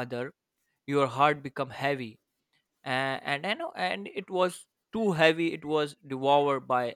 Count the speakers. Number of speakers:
1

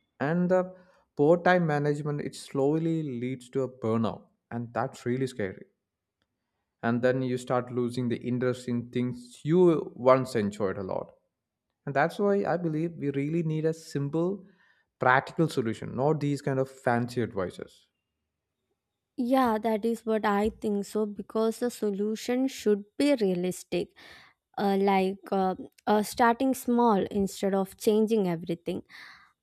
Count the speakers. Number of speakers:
2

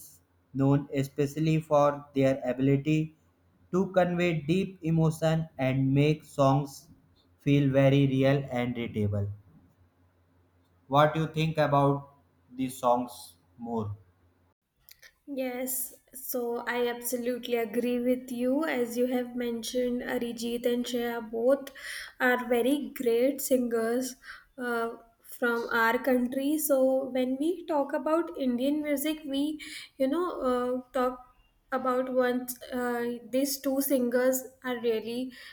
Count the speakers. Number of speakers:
2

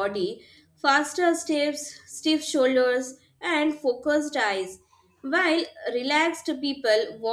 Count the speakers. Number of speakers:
1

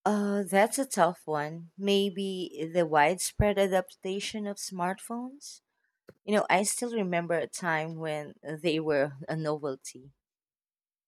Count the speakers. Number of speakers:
1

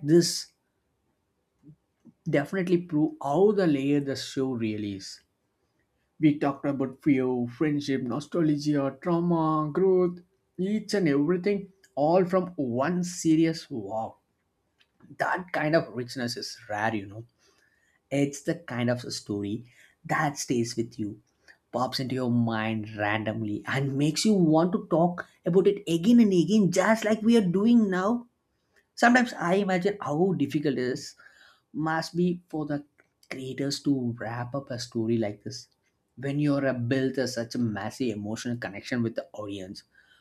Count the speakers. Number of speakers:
1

